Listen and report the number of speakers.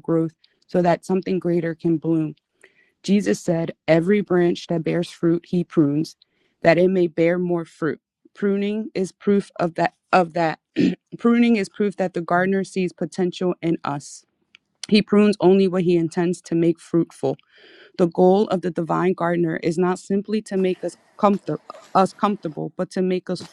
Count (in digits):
1